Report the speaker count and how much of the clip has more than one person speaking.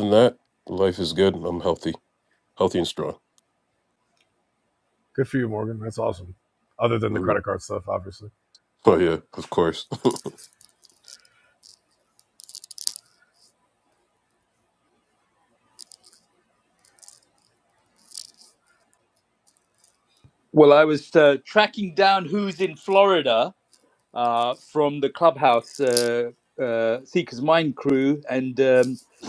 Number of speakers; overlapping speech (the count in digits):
3, about 1%